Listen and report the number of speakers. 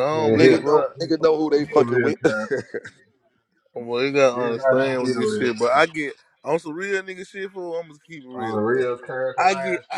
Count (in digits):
3